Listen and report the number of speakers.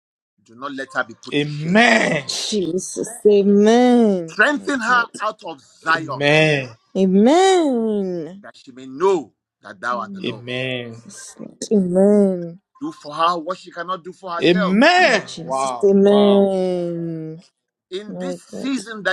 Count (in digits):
3